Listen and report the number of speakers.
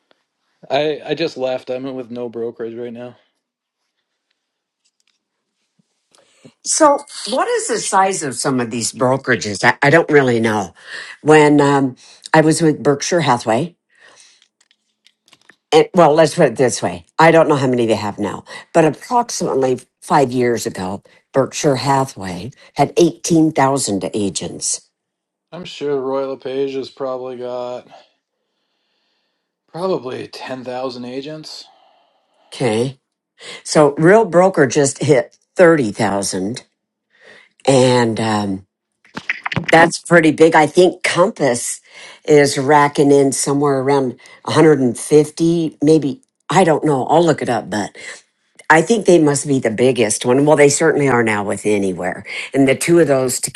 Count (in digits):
2